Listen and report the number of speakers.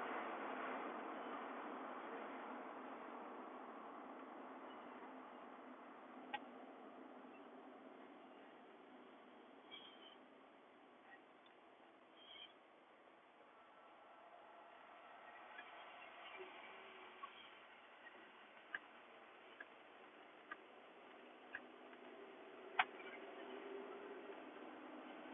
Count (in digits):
0